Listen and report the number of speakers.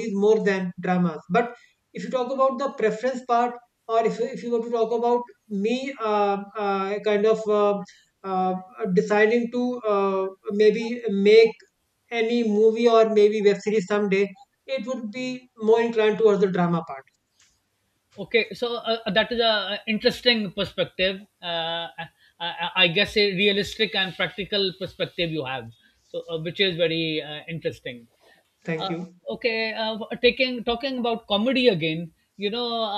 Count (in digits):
2